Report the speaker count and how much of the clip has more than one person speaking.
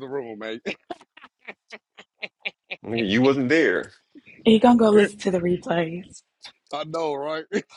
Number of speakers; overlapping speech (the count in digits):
3, no overlap